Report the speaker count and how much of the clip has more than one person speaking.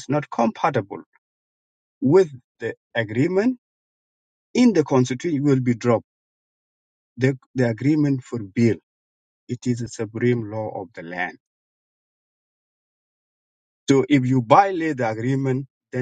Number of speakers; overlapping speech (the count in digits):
1, no overlap